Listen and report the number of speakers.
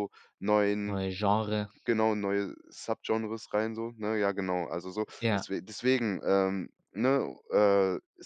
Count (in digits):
2